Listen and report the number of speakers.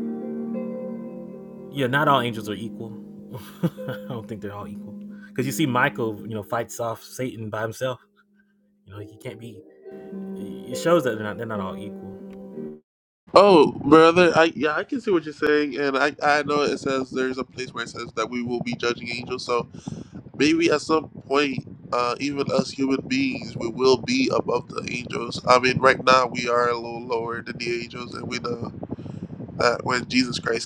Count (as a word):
two